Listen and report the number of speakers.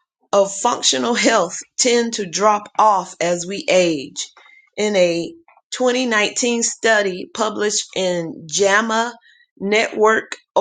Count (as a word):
one